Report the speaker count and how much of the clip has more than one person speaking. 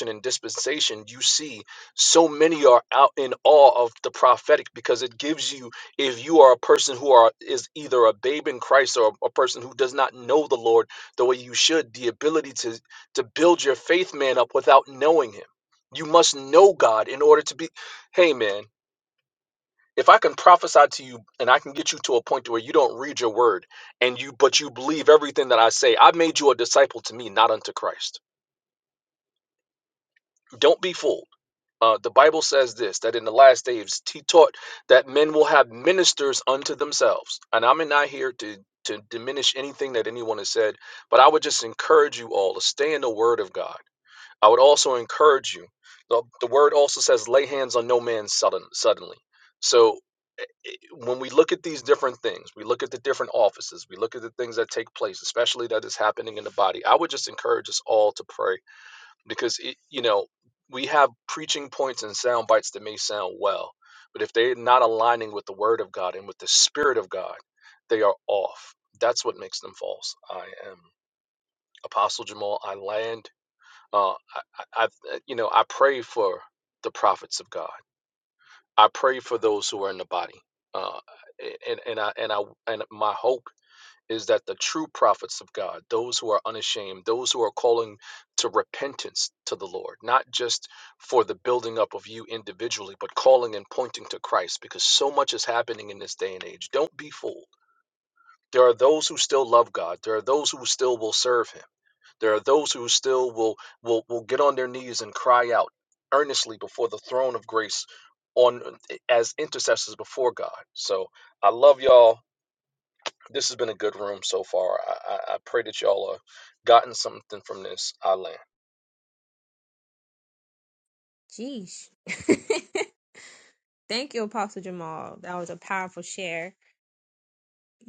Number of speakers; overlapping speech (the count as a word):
two, no overlap